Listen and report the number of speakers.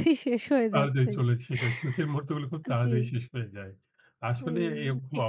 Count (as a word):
two